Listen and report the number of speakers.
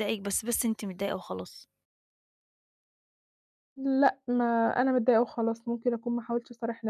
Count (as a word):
two